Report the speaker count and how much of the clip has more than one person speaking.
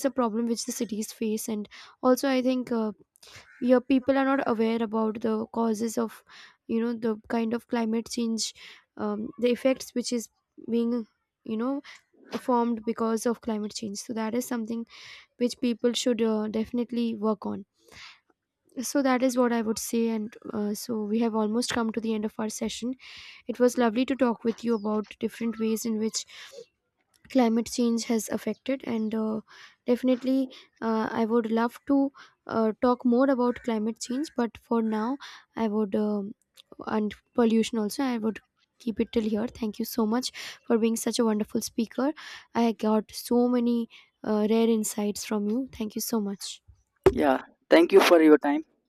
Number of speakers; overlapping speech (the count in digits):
2, no overlap